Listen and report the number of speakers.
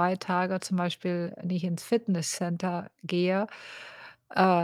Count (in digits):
1